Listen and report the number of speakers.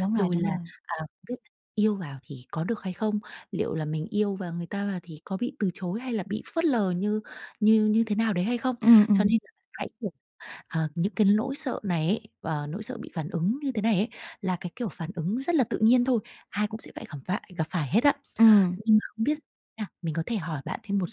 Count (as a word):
two